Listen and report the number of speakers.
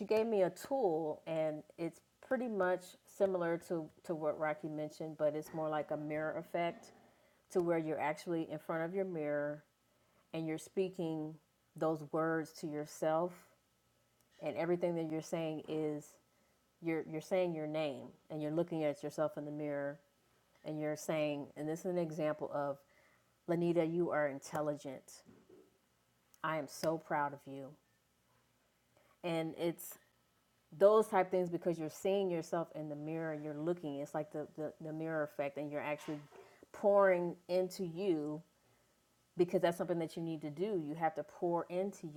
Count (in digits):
1